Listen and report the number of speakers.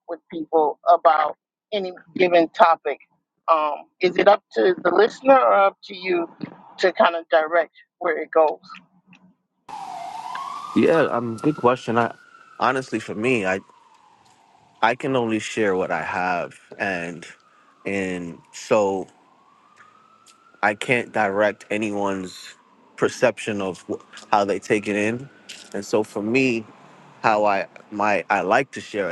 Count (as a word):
two